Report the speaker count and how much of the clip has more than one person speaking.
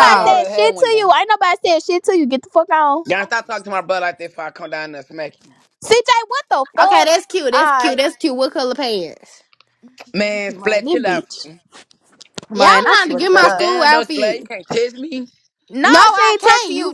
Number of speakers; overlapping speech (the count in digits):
3, about 34%